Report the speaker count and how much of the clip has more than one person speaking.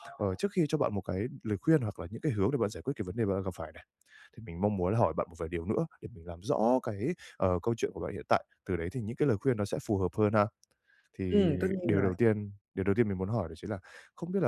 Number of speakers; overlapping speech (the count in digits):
2, about 8%